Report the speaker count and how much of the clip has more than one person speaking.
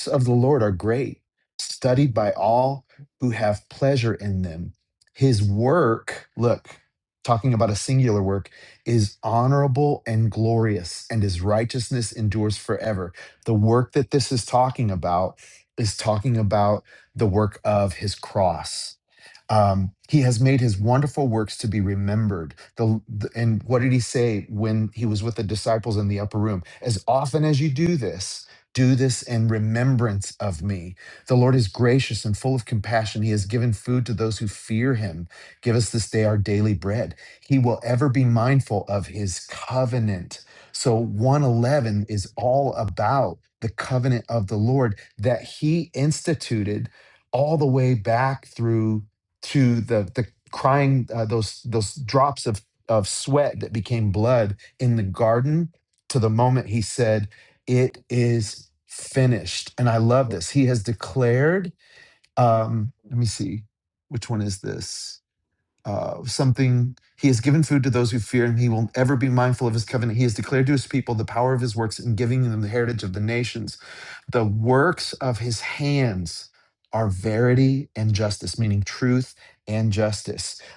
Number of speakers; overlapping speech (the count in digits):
1, no overlap